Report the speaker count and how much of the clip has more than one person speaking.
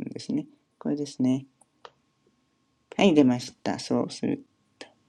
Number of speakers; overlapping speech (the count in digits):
1, no overlap